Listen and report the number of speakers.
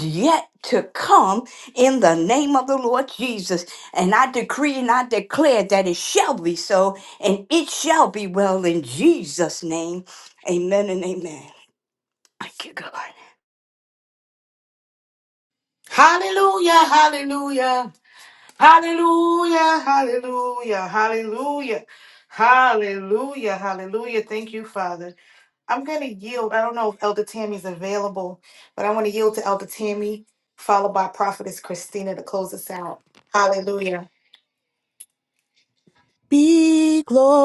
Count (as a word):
three